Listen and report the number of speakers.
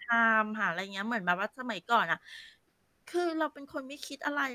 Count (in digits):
1